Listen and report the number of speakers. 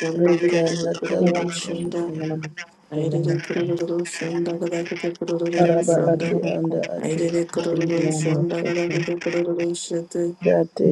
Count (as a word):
three